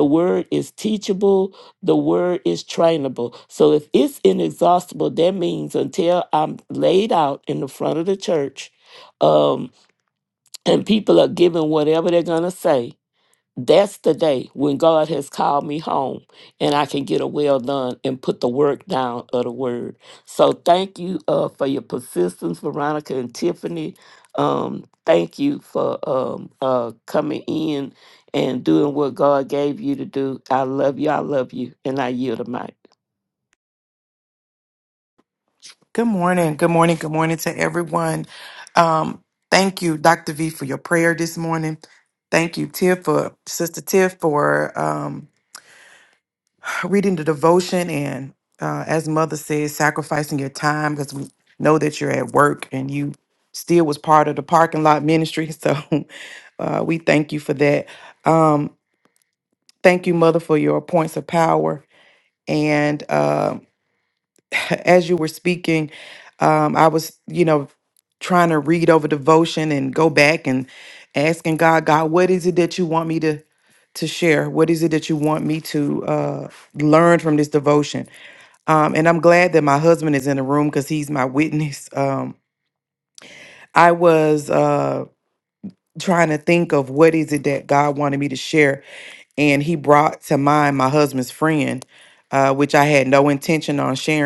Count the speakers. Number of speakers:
2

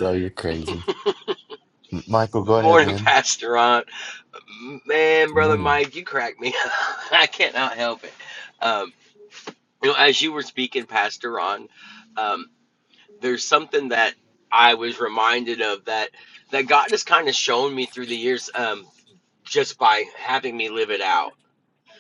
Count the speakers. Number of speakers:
2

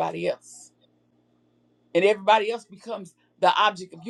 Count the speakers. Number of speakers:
1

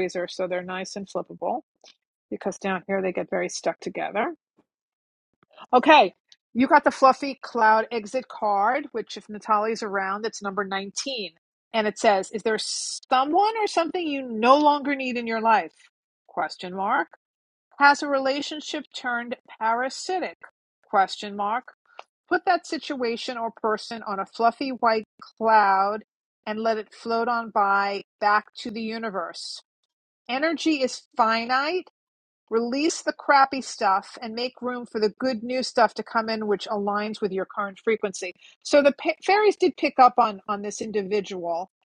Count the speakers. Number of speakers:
1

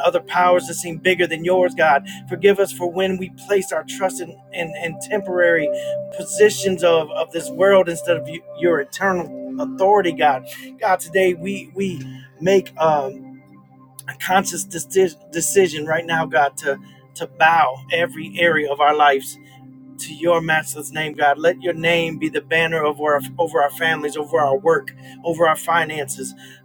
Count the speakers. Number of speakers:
1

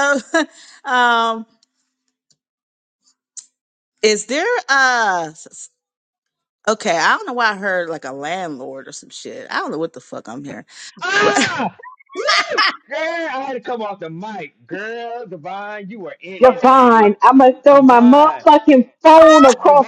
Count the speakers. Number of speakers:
3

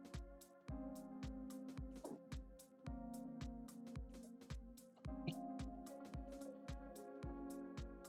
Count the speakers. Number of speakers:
0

